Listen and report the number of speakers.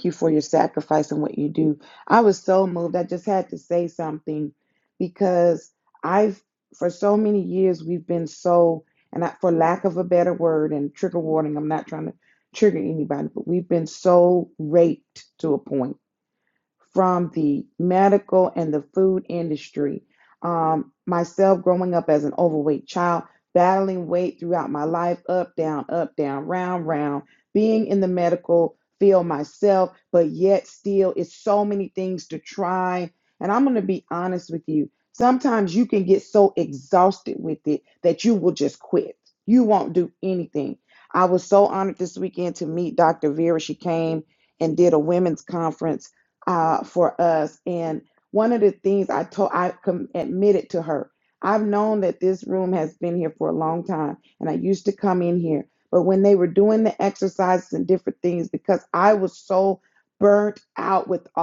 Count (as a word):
one